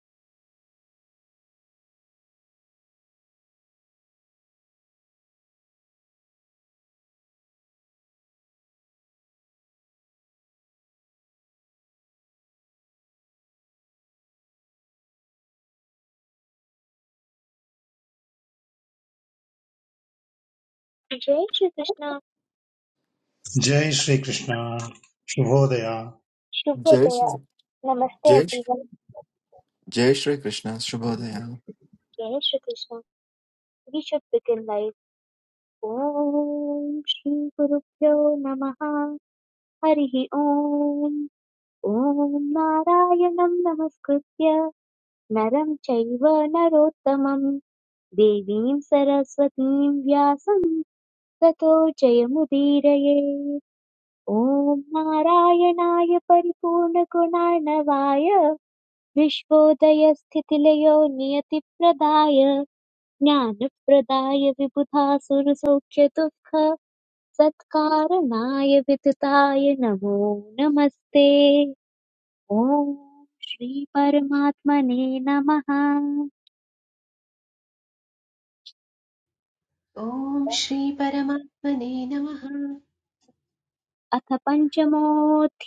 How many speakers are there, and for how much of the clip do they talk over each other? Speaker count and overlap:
4, about 1%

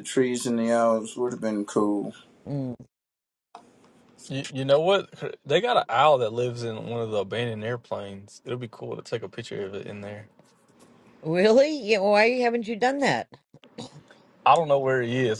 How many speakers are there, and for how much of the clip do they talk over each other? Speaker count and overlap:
3, no overlap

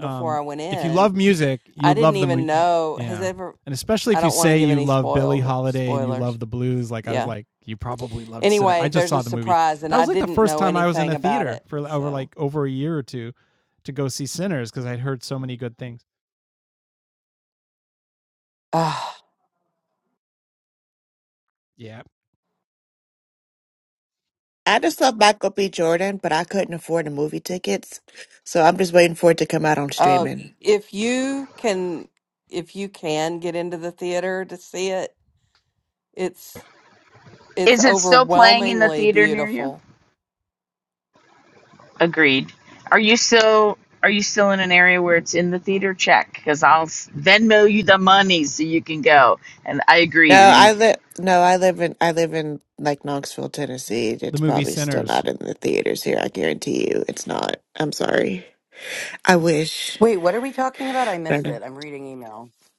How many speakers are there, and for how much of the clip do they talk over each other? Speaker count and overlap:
5, about 17%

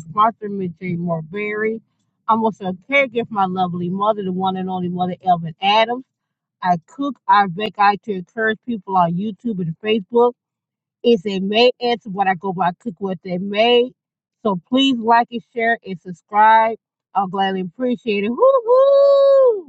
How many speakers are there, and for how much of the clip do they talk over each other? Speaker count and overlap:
1, no overlap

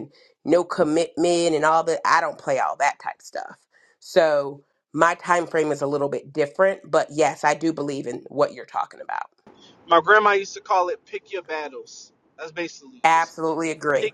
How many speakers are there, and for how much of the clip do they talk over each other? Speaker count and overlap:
2, about 2%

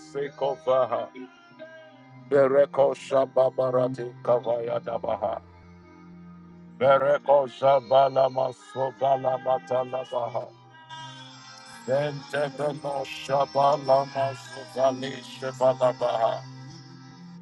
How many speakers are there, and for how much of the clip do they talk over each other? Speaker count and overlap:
1, no overlap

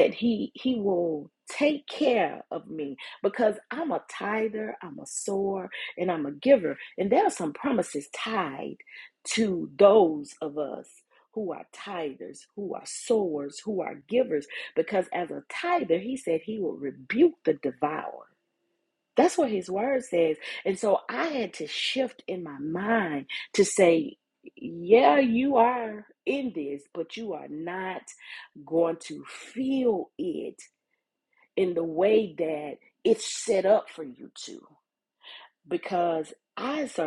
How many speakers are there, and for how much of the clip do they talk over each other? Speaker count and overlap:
1, no overlap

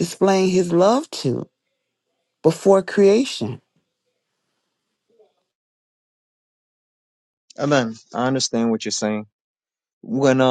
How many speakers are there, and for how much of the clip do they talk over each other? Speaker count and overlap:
2, no overlap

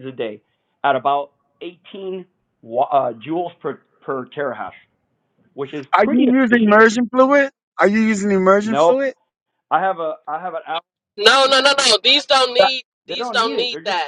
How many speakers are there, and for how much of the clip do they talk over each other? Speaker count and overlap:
3, about 17%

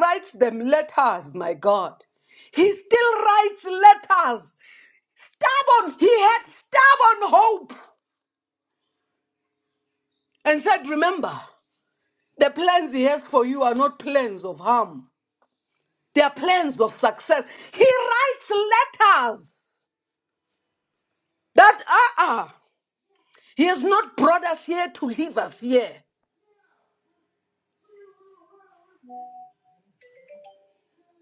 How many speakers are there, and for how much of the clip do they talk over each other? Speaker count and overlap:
1, no overlap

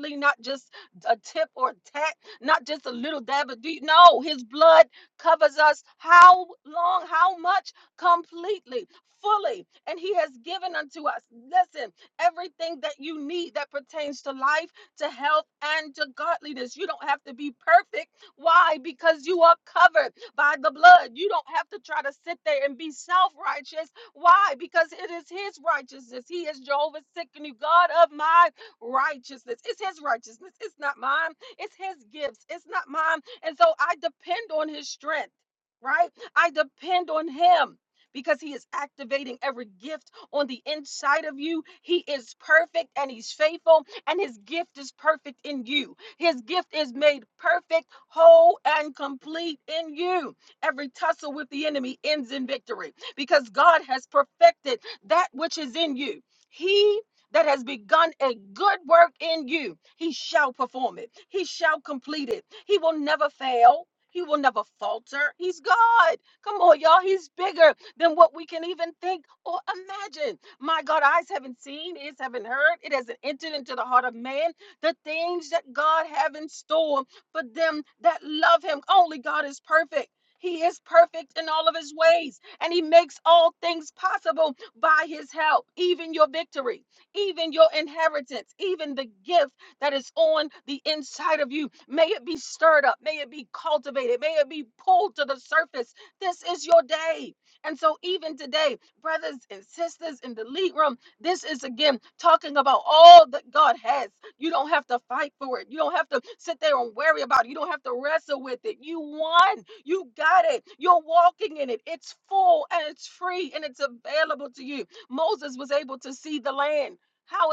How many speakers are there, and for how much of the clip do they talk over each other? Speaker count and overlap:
1, no overlap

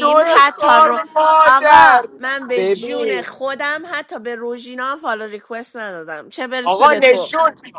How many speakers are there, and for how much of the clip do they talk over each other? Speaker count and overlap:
2, about 38%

